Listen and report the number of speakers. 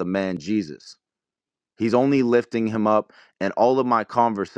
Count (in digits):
1